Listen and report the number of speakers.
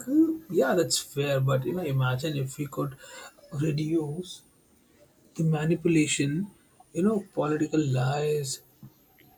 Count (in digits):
1